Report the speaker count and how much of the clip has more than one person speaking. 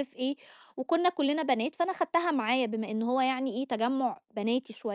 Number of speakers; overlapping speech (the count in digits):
1, no overlap